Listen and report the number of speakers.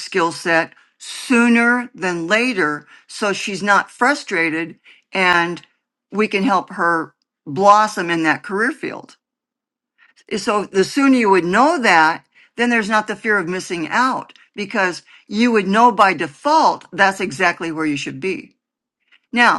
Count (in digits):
1